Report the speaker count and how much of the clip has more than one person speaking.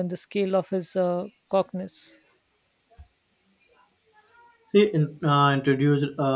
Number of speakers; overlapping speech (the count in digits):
2, no overlap